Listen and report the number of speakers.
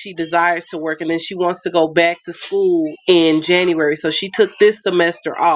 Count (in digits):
1